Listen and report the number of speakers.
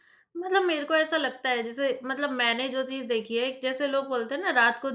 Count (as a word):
one